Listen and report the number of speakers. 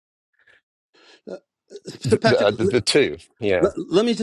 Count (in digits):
2